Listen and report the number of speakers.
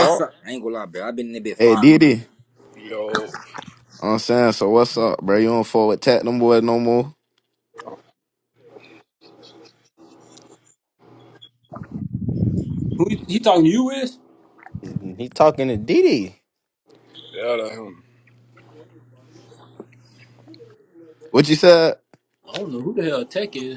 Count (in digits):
5